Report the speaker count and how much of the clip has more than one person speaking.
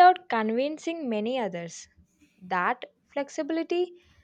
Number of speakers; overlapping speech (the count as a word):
one, no overlap